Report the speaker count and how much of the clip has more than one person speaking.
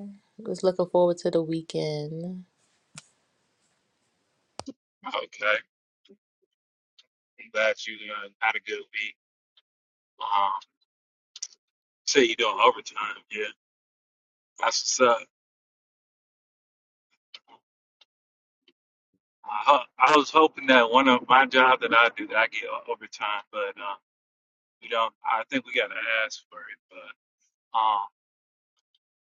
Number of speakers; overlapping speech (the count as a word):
two, no overlap